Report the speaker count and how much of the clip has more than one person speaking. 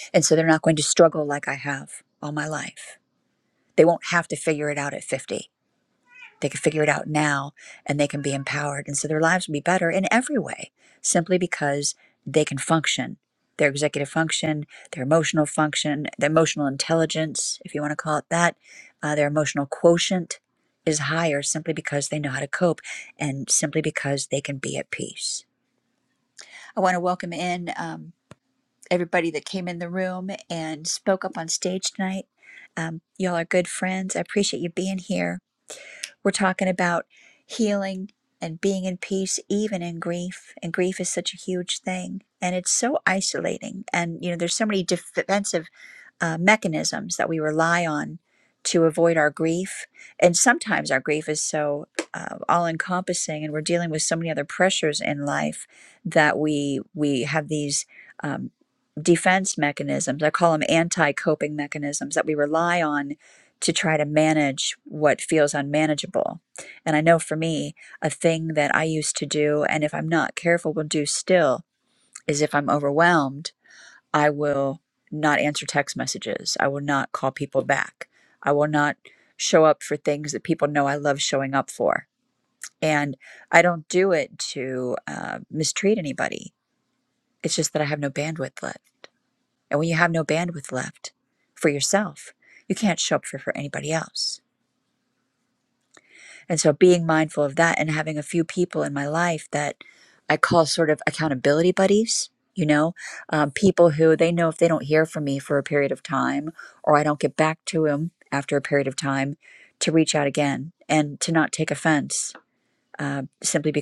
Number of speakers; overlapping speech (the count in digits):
1, no overlap